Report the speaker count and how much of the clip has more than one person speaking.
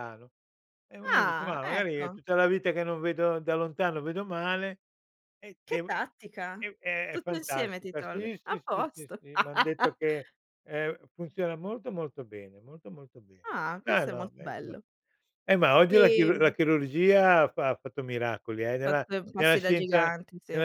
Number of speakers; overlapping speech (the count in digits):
2, about 29%